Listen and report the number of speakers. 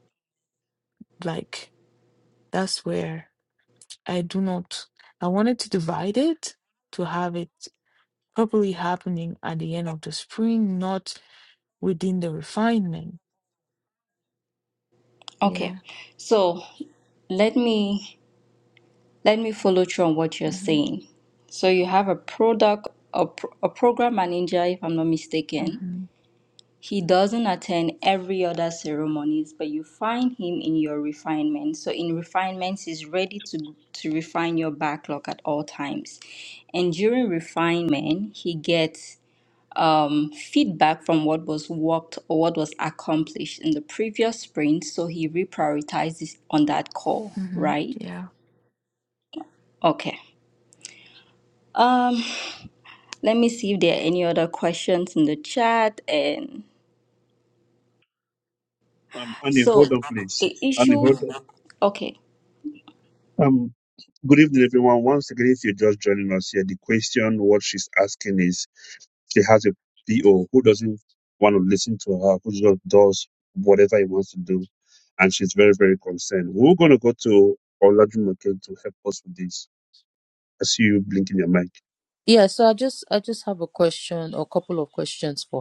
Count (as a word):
four